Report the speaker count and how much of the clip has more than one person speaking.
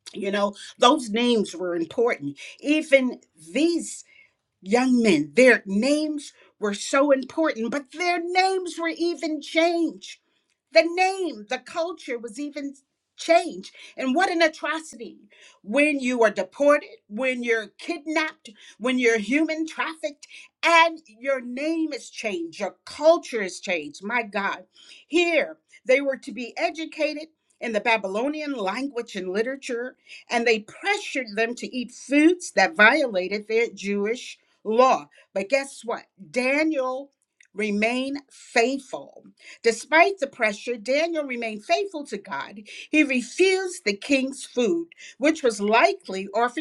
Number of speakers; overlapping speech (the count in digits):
1, no overlap